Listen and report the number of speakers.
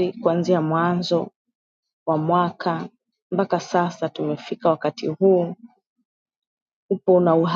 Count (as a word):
one